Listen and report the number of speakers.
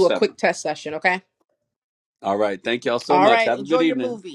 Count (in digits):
2